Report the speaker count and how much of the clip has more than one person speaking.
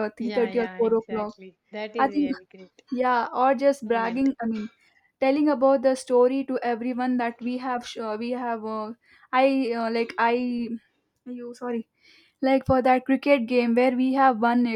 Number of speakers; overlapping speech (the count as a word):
two, about 13%